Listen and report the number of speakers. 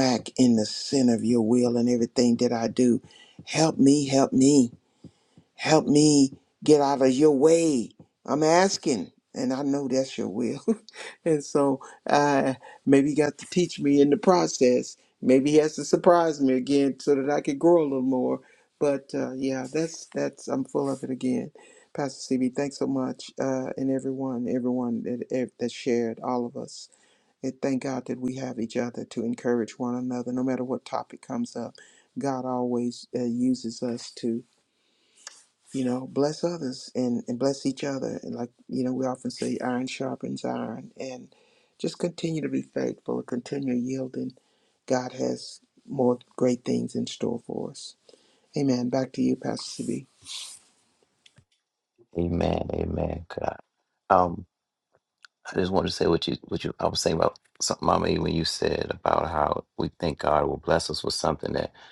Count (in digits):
2